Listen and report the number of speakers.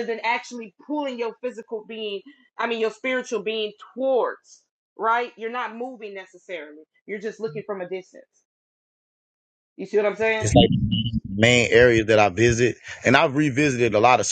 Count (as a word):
two